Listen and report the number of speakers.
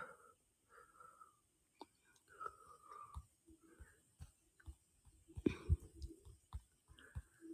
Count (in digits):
0